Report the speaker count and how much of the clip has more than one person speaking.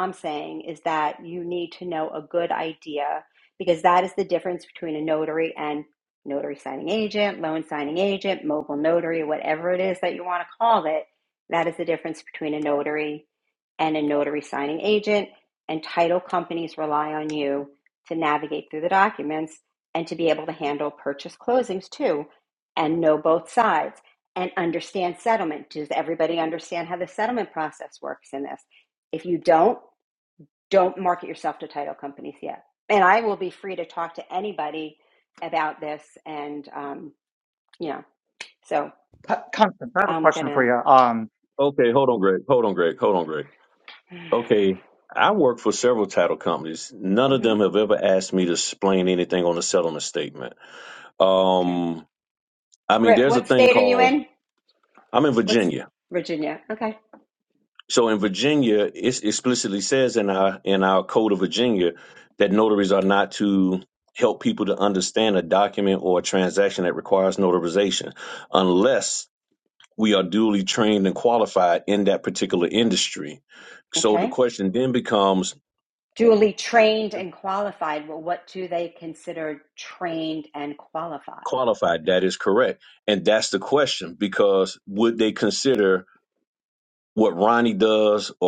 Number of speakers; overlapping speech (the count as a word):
three, about 3%